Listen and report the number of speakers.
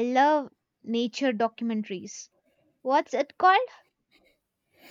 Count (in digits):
1